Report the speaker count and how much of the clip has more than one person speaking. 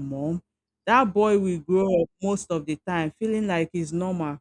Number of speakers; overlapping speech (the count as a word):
one, no overlap